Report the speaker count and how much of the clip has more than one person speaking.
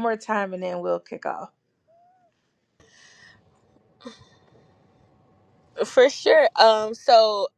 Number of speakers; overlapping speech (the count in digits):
2, no overlap